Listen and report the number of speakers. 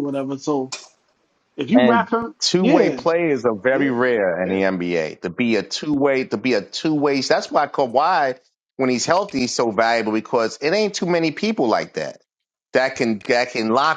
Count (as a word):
two